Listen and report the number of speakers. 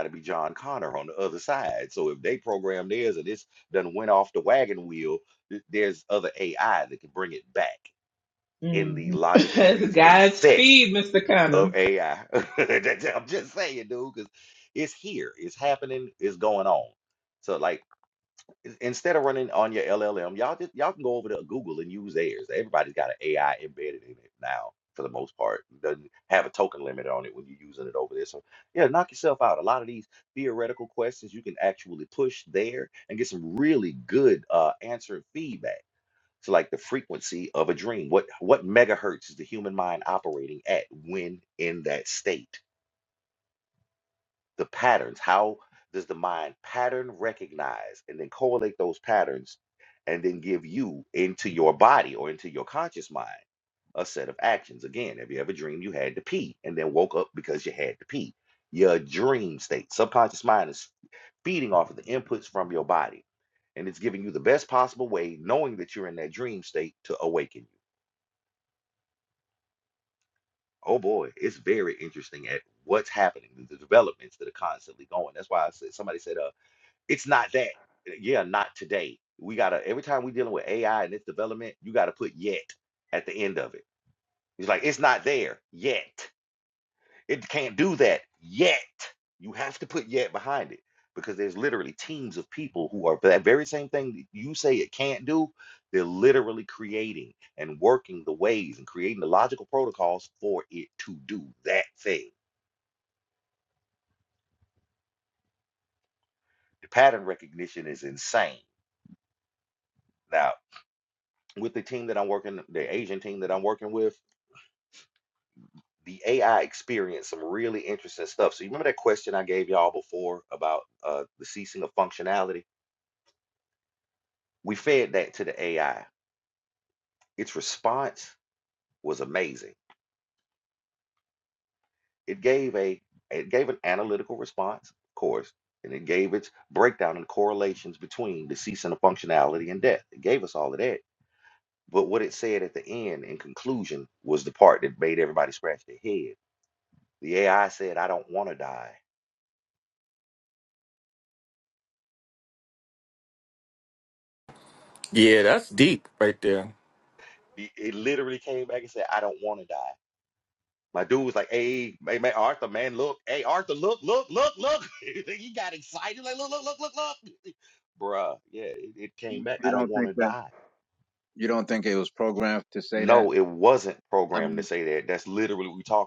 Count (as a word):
four